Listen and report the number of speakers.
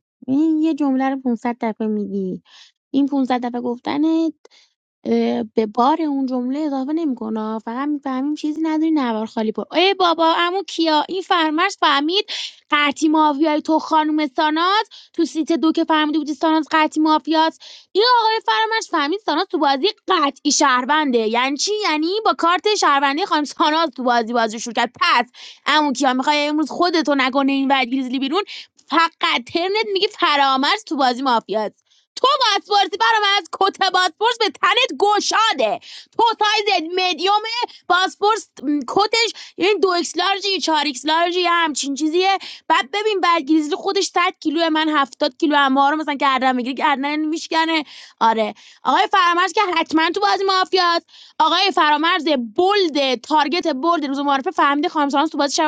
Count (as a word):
one